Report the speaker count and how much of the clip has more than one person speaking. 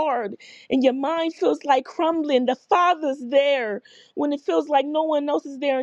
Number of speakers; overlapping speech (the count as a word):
one, no overlap